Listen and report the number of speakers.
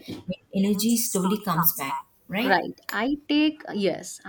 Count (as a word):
two